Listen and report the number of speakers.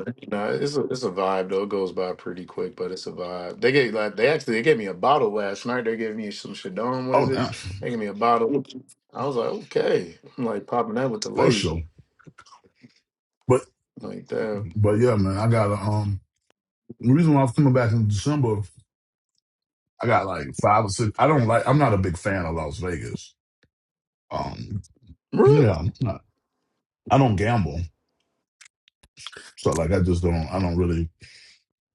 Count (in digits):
2